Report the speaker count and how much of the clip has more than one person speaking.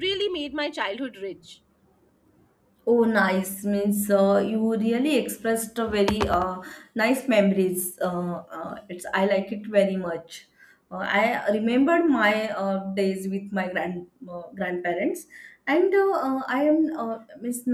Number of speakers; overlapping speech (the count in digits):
2, no overlap